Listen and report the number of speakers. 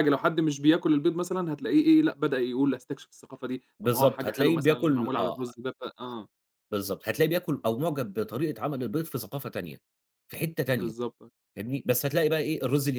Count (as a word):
two